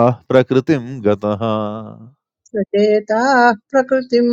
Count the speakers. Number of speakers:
two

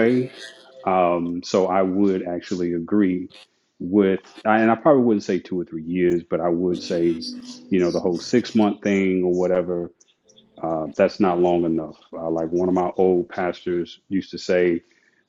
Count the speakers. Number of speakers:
one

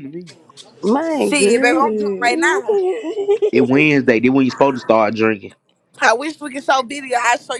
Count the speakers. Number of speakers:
three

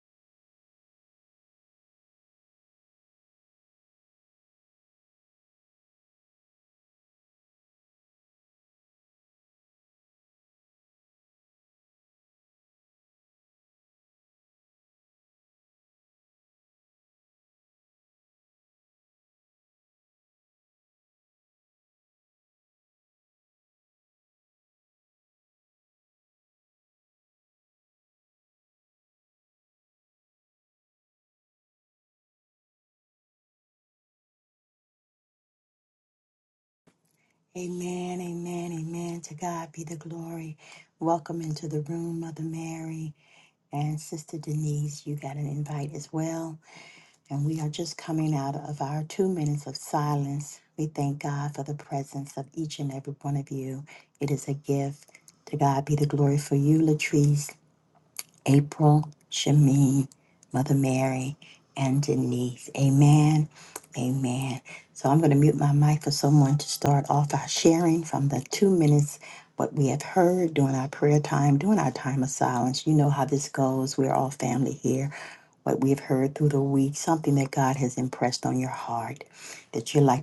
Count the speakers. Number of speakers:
one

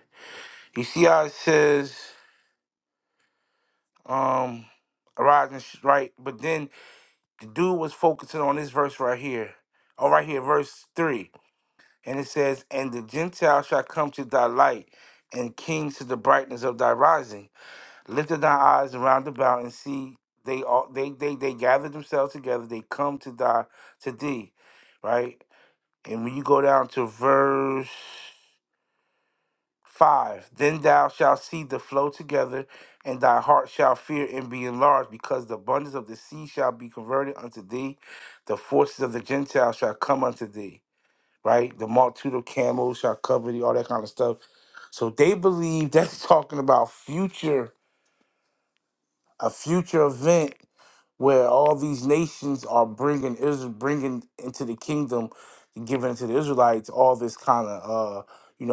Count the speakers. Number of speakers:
one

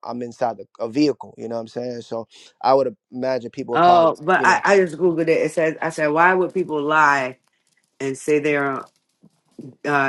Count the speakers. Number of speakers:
two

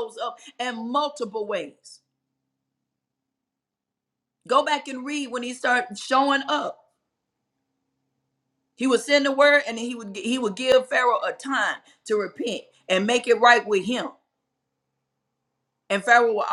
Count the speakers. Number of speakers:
one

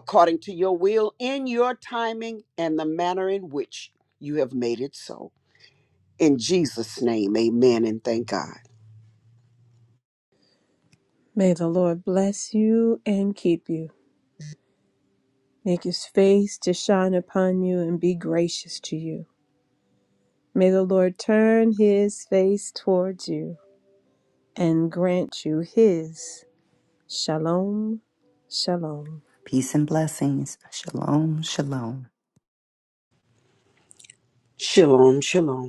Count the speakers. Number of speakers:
three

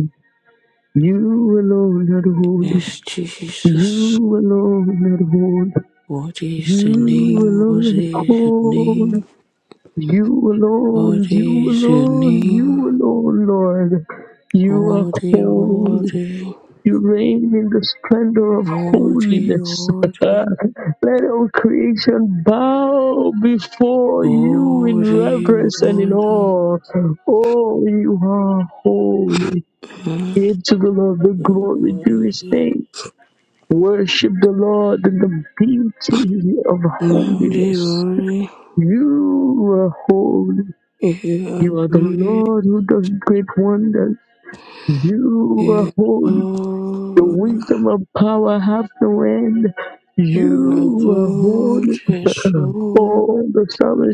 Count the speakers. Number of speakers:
two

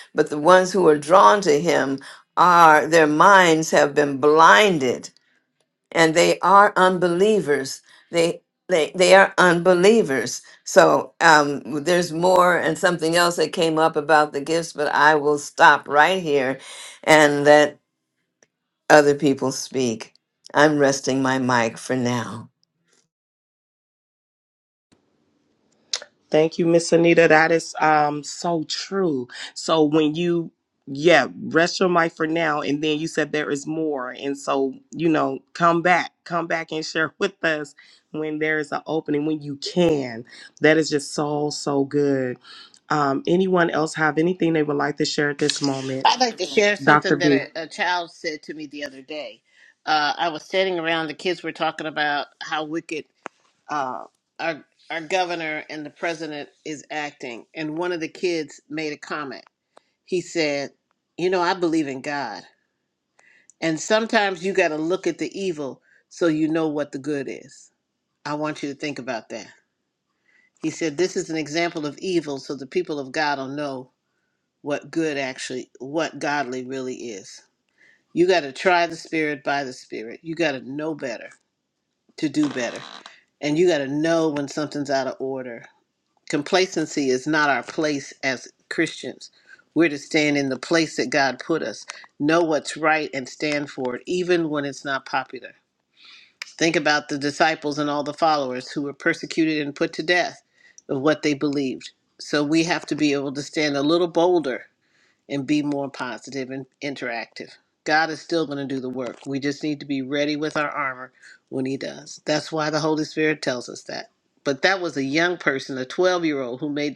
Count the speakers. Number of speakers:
three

